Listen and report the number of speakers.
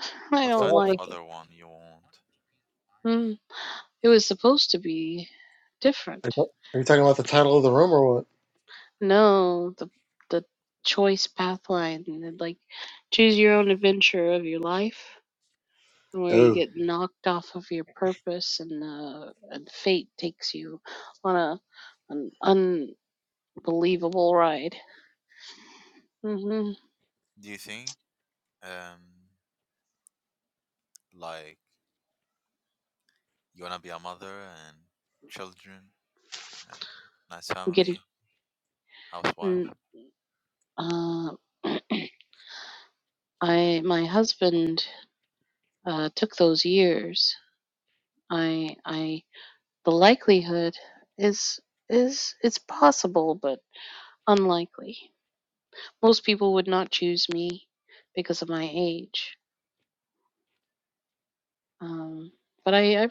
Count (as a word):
three